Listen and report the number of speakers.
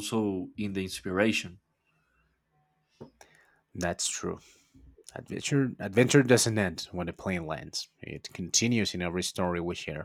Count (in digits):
2